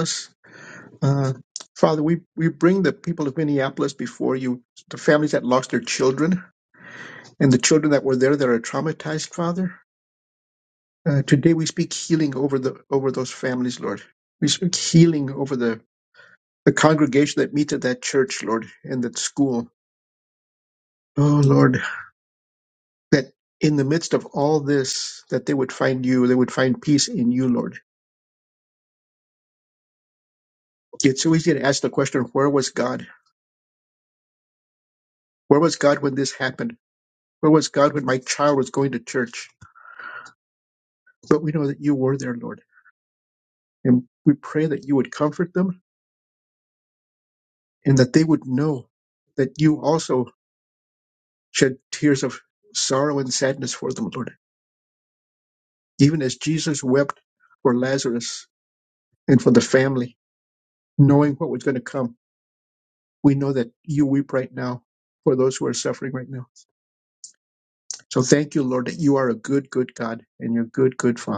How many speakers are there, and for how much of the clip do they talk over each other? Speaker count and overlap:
1, no overlap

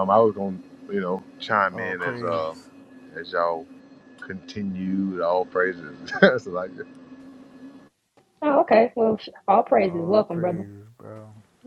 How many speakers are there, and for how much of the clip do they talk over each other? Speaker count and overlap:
3, about 13%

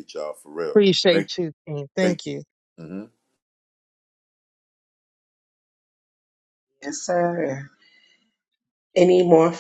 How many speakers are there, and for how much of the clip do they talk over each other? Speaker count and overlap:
3, about 4%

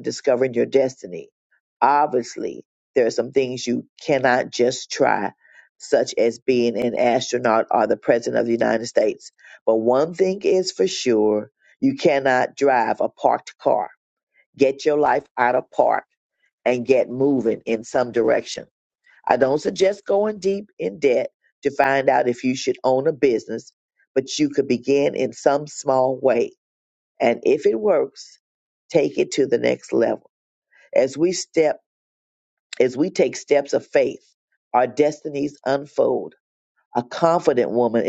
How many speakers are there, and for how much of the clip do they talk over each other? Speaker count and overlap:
1, no overlap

